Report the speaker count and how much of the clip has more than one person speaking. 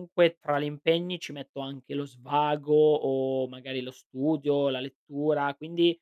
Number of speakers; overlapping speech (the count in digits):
1, no overlap